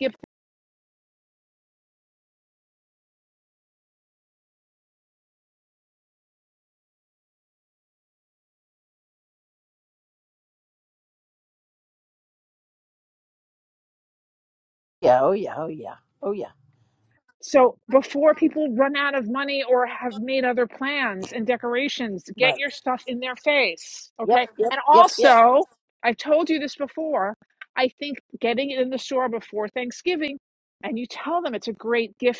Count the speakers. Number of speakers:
two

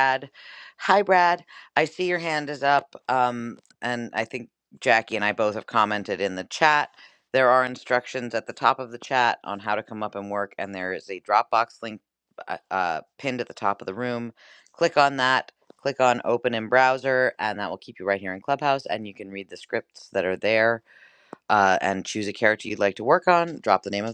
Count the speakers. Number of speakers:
one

